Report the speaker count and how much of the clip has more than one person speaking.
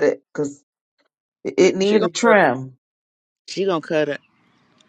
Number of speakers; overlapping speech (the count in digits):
2, about 13%